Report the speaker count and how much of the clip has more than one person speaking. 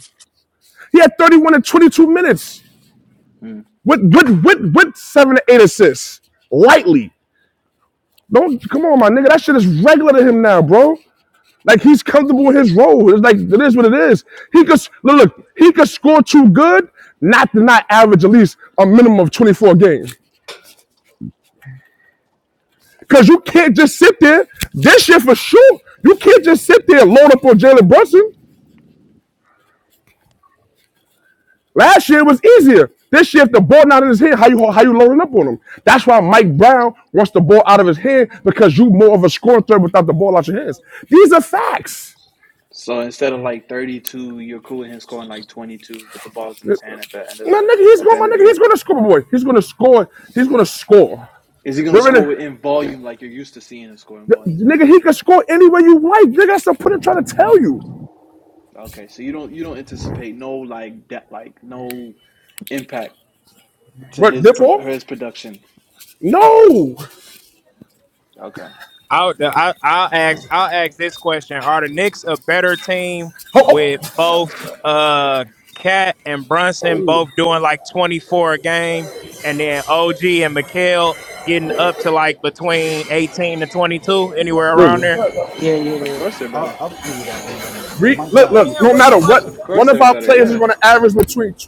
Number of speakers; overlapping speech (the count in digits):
4, about 7%